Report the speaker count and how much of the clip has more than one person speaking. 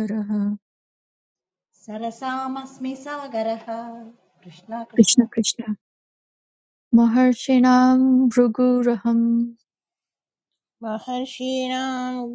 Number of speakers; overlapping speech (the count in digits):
3, about 3%